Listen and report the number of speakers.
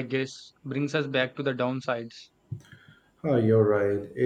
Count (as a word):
two